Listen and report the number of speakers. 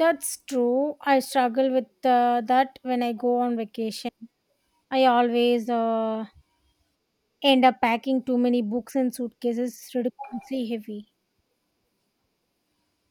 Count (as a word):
one